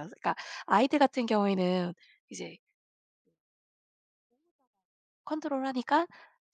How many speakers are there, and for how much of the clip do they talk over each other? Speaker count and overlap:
one, no overlap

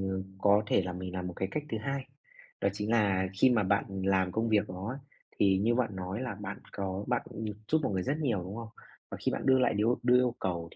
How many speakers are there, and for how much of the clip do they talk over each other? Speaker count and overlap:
one, no overlap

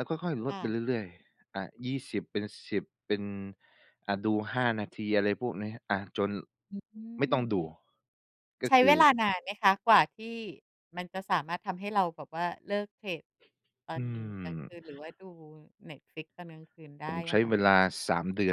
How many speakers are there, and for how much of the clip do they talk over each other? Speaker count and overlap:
two, about 6%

